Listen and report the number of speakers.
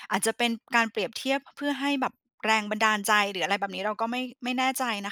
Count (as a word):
one